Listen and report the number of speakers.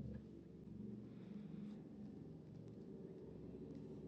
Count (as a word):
zero